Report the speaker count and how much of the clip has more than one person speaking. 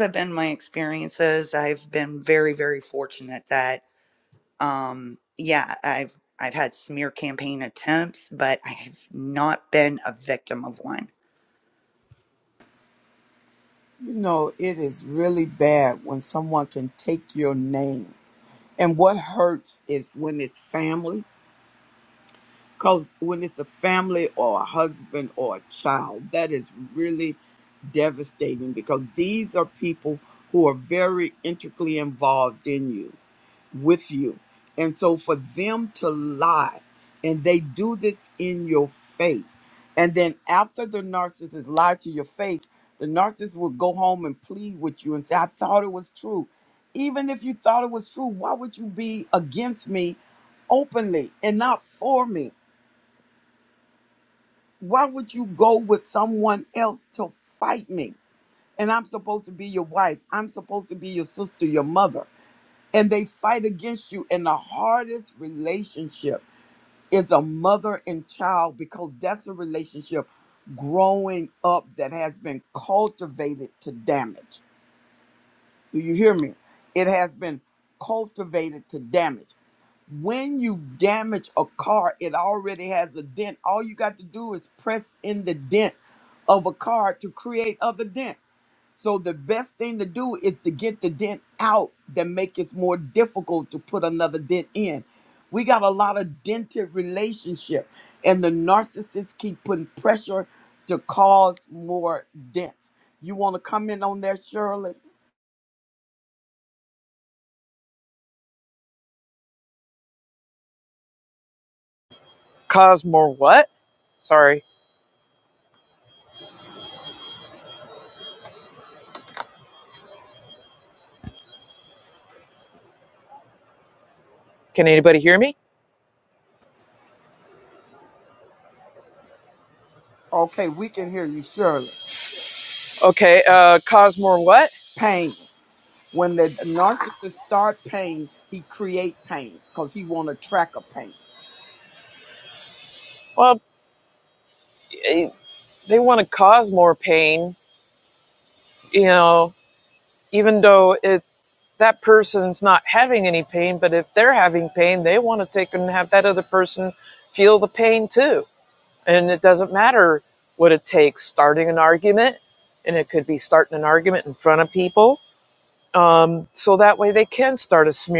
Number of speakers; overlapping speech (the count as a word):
three, no overlap